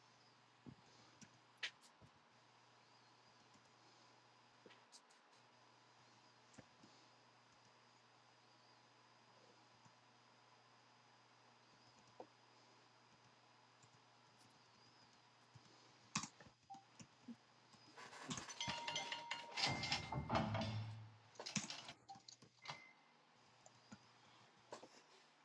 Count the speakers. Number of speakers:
0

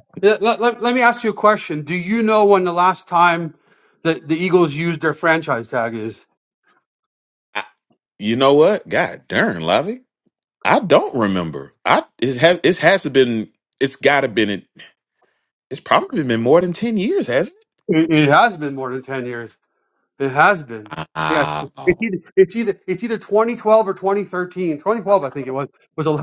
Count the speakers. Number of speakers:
2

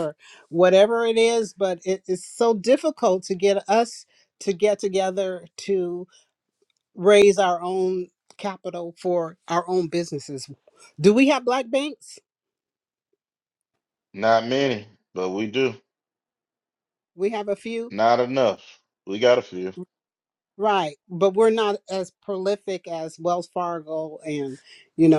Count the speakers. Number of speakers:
2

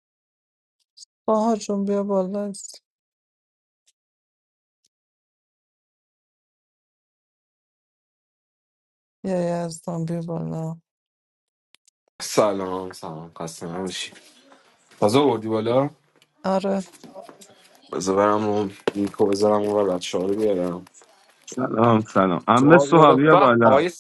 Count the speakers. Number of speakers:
3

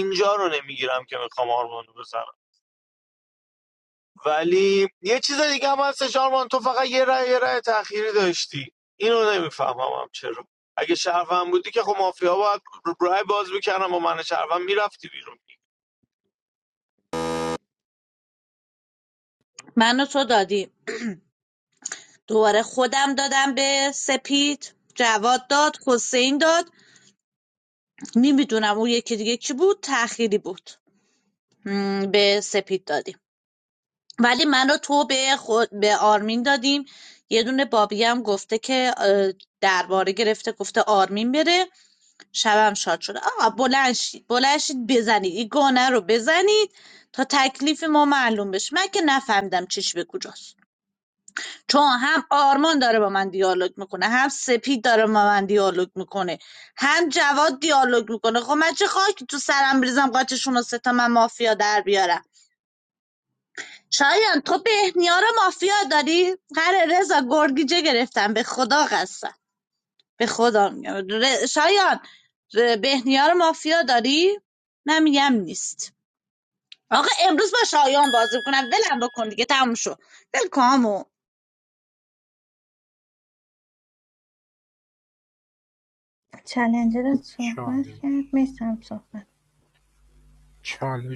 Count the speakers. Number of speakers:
4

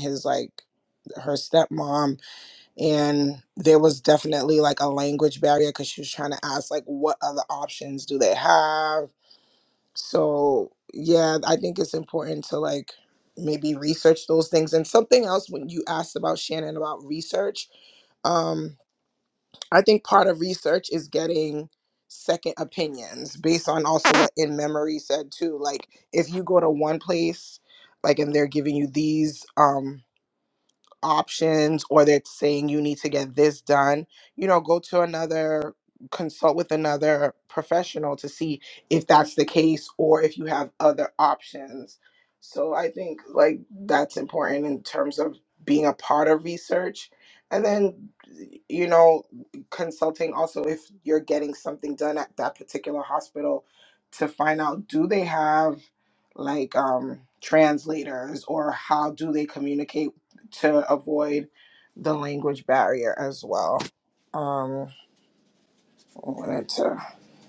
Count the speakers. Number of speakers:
1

